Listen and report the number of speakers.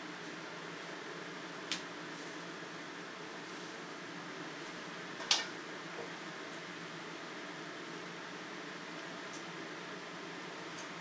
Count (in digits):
0